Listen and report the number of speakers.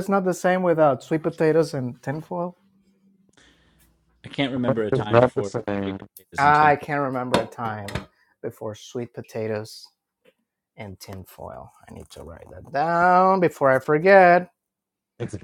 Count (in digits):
3